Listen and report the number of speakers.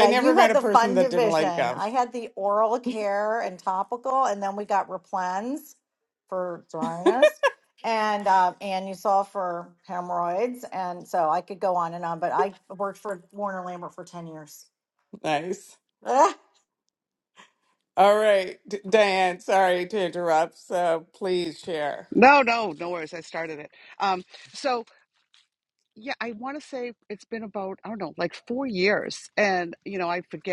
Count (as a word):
three